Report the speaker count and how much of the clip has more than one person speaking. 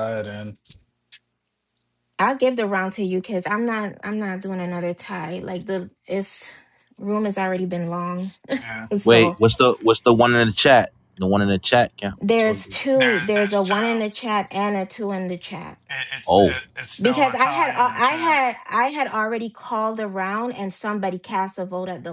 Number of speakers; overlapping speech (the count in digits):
3, about 14%